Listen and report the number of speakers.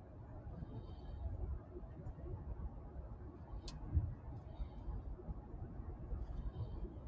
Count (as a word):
zero